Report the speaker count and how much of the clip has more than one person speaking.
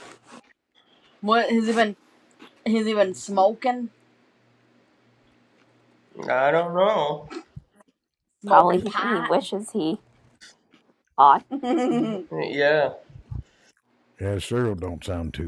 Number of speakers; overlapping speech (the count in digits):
4, about 6%